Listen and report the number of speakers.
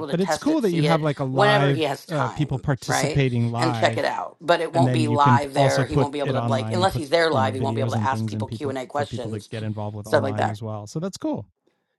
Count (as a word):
two